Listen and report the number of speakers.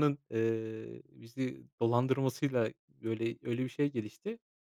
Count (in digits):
1